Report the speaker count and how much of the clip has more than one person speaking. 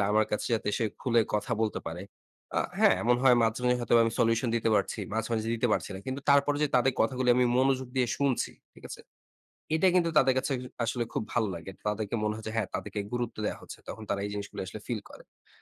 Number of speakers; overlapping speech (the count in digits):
1, no overlap